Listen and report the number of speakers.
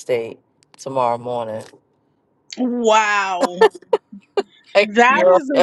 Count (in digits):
2